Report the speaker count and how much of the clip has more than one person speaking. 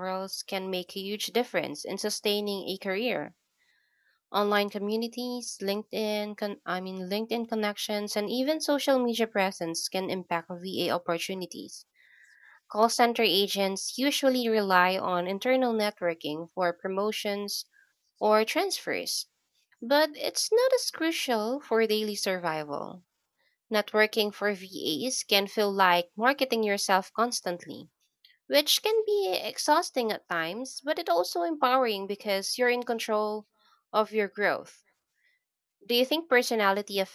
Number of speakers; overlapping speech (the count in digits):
1, no overlap